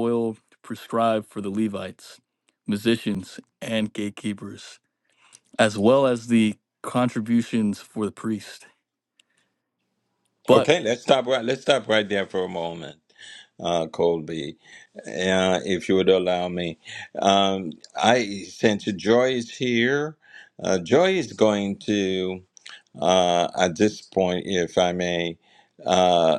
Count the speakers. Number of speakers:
two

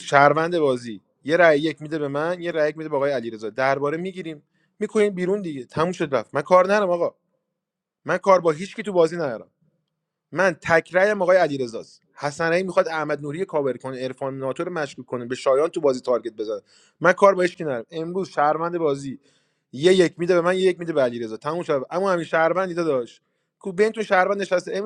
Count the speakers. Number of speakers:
one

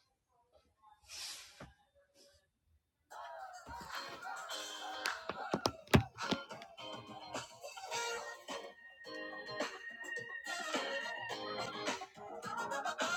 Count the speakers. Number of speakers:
zero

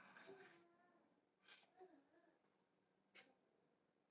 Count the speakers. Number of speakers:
zero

